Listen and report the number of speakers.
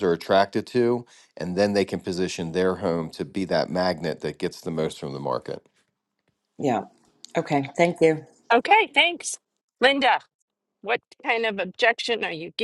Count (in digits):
3